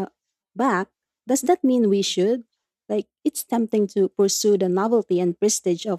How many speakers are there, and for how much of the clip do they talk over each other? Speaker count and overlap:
1, no overlap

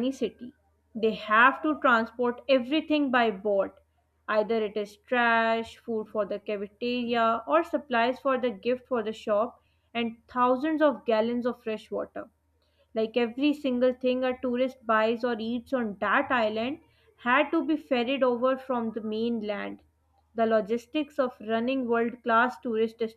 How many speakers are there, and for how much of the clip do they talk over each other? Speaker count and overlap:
1, no overlap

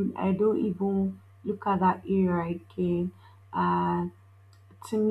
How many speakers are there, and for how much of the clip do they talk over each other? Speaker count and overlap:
1, no overlap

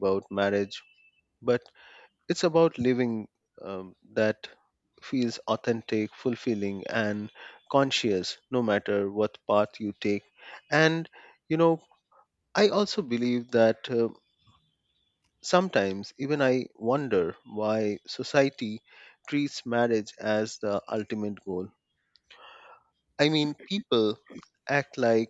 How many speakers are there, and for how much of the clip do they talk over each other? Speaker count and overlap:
1, no overlap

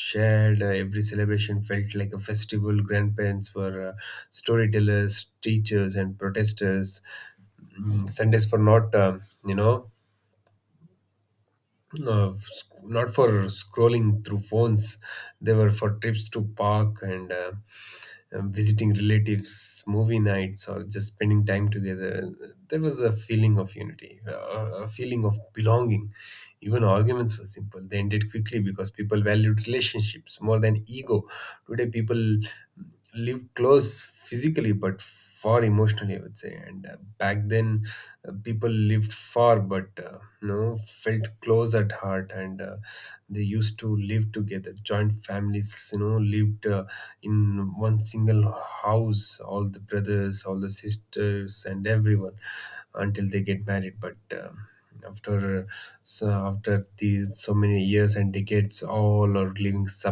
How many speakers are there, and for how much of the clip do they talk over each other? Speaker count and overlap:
1, no overlap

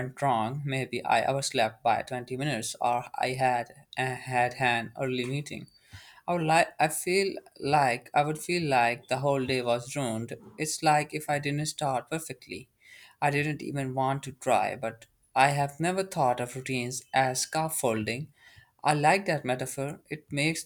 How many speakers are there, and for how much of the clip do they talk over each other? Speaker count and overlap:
1, no overlap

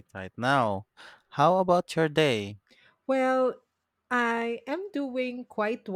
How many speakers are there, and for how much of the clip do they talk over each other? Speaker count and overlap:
2, no overlap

